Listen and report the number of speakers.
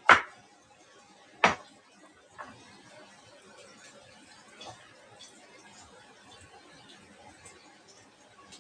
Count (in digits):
0